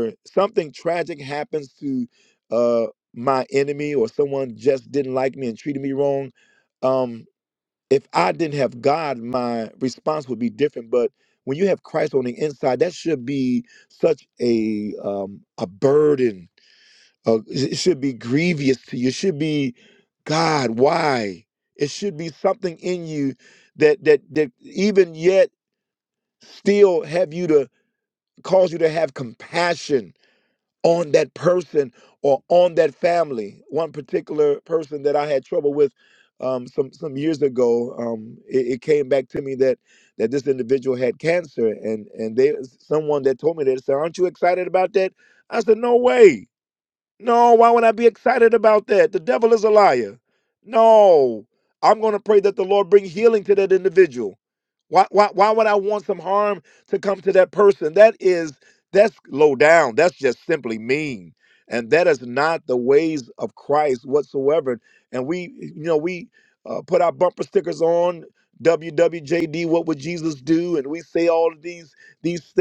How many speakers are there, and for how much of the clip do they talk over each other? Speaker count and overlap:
one, no overlap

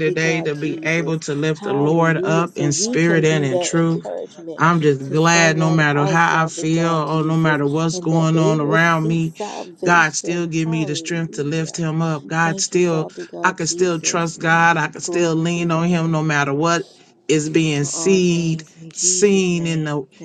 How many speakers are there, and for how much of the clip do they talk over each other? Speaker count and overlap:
two, about 64%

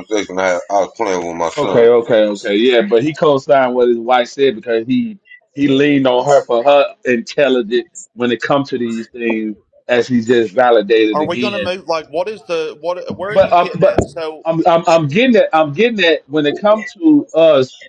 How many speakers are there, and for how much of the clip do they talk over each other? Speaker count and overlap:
three, about 8%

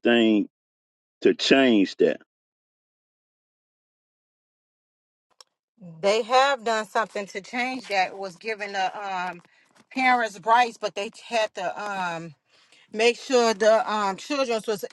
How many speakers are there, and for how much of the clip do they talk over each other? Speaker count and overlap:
two, no overlap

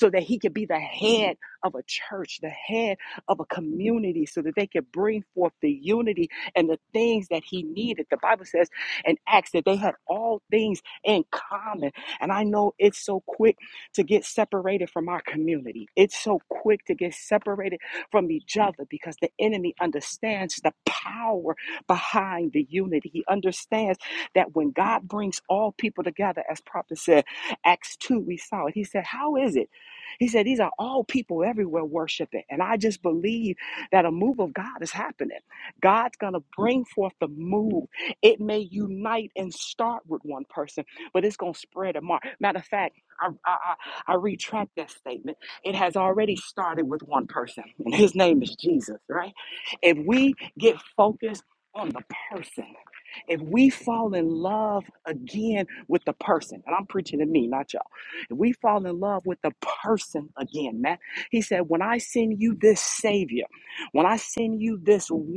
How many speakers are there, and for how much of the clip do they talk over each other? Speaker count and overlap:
one, no overlap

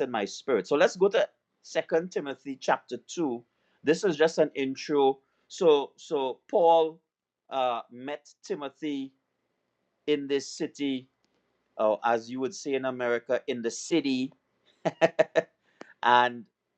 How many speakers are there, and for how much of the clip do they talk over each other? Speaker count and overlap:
one, no overlap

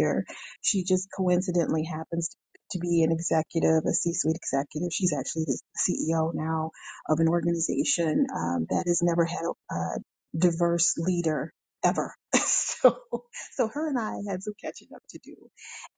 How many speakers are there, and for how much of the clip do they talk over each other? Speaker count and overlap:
one, no overlap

